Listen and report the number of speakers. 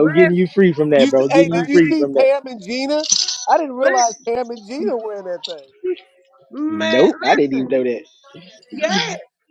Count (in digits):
3